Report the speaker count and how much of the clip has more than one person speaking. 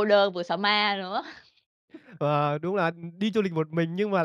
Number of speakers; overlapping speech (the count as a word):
two, no overlap